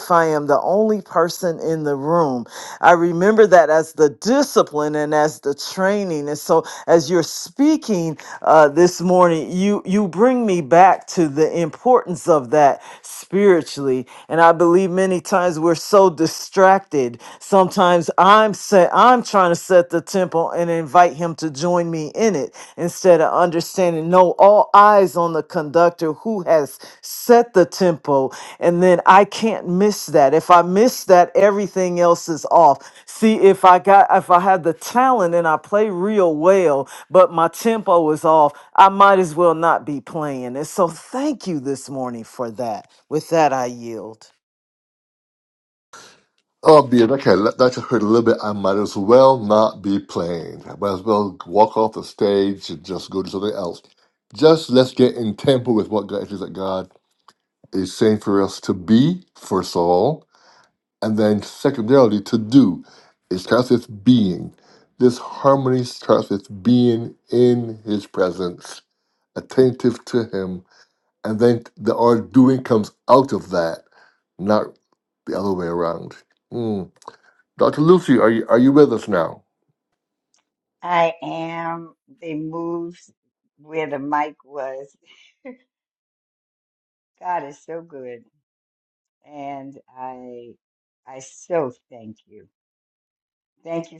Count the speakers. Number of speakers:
3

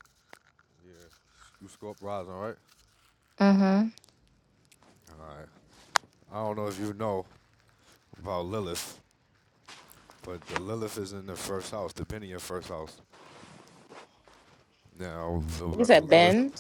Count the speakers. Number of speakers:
2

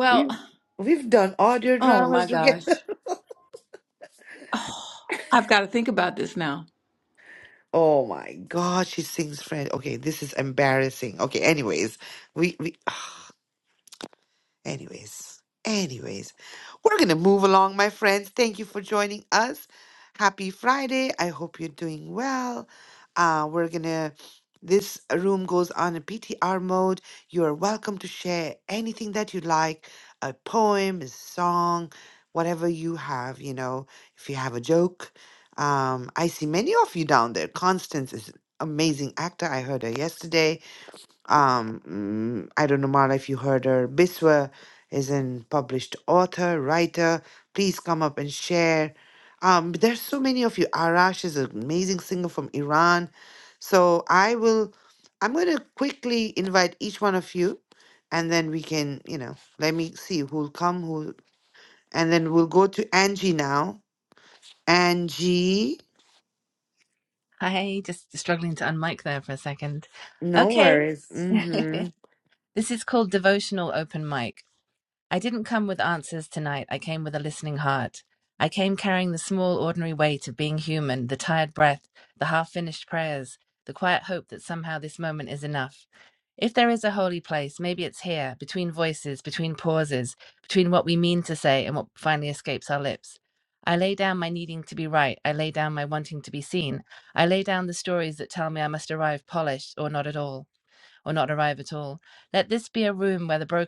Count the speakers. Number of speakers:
3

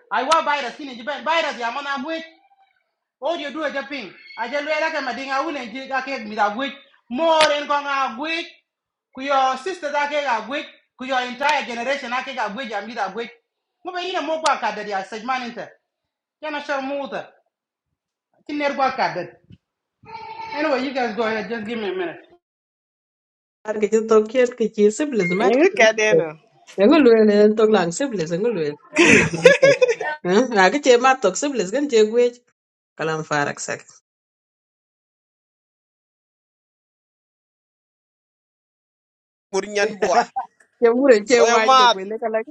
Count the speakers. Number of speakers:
3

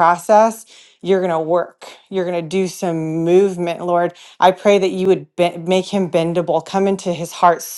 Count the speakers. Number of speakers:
1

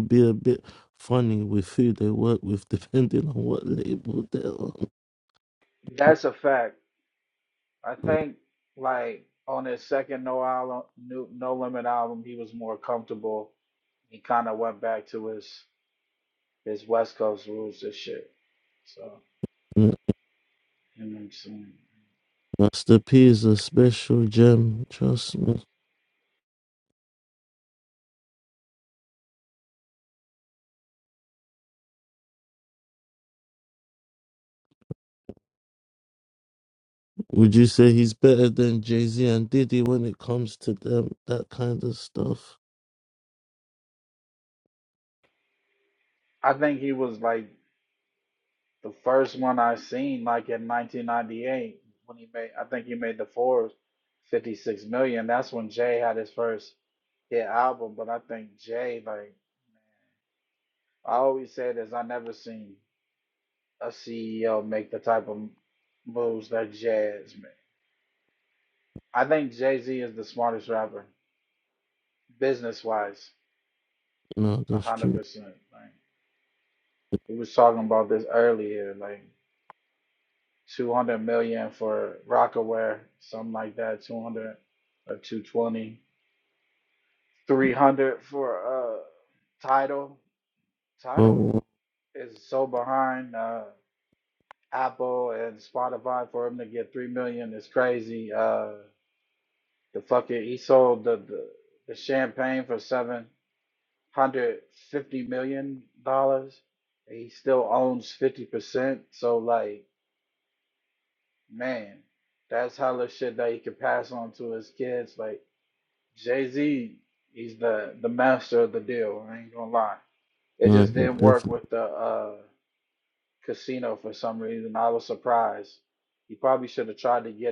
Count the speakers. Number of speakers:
2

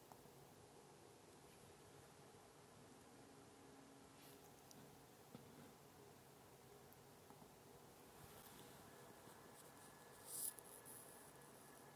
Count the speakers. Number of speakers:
0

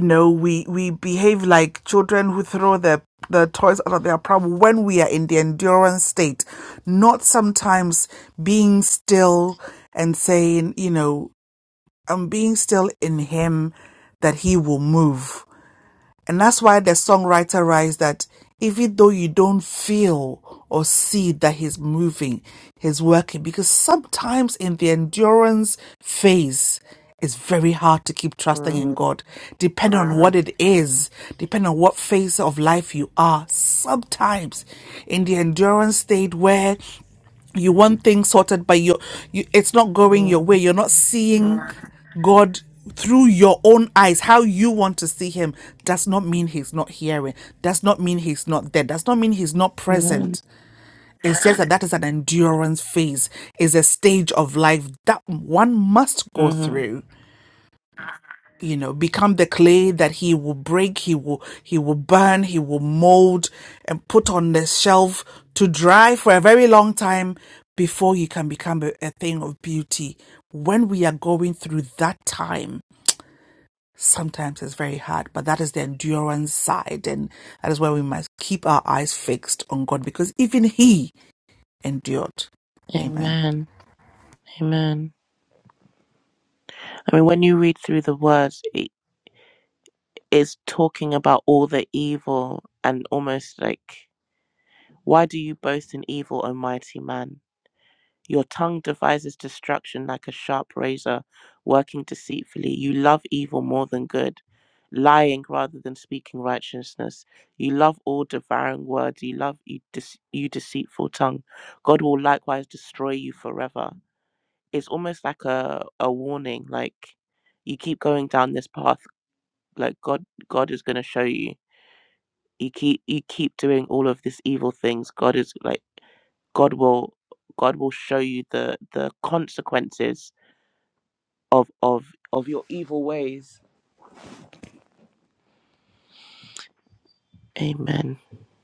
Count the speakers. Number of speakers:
2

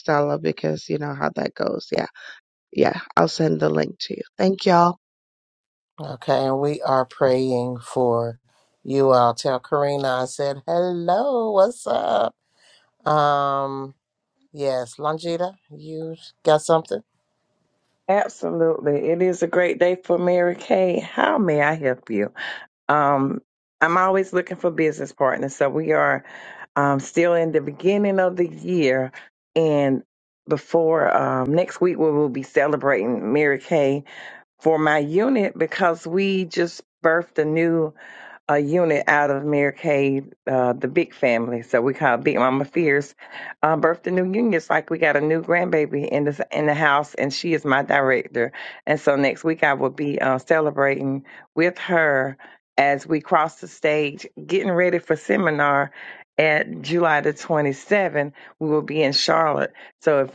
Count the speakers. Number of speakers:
3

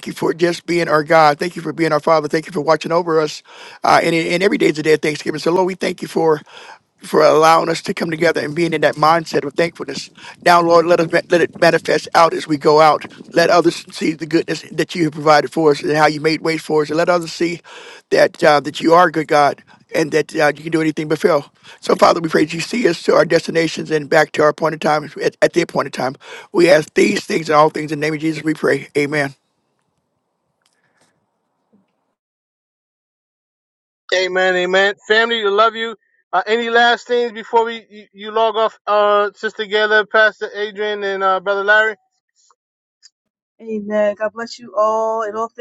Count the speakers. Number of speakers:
3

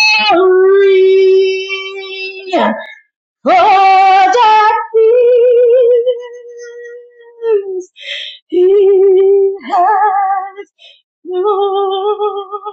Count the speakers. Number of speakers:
1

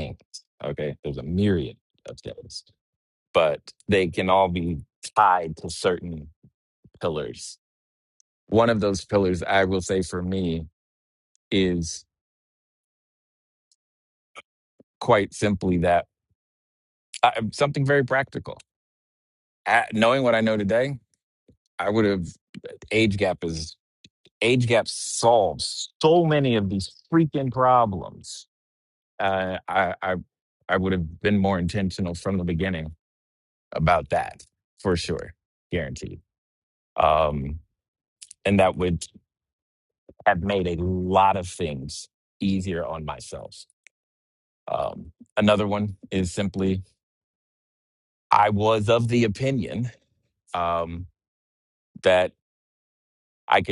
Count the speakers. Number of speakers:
1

